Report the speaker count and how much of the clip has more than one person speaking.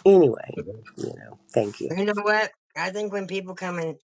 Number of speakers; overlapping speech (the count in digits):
2, about 1%